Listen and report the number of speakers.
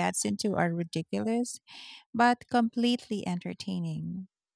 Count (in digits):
1